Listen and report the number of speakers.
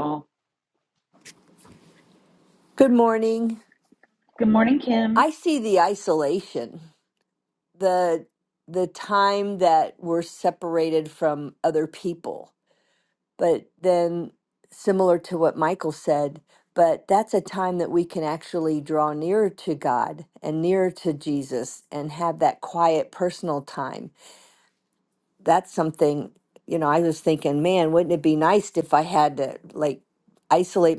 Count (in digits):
2